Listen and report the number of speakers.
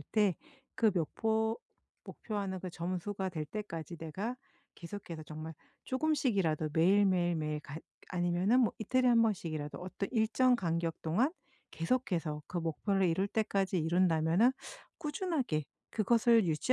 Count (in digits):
1